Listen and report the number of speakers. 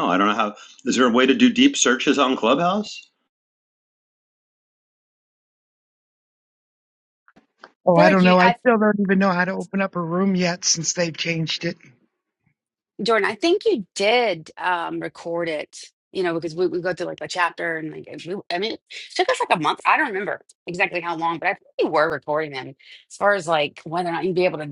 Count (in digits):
3